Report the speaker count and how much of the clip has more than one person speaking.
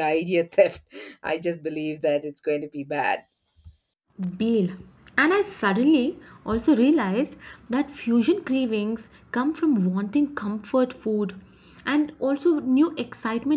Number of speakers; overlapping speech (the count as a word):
two, no overlap